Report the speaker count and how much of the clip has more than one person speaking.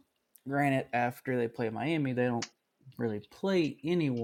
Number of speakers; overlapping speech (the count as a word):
one, no overlap